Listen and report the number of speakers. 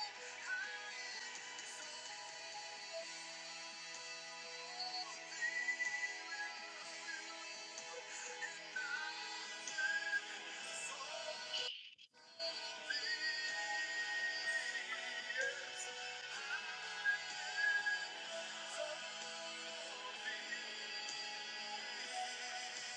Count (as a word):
zero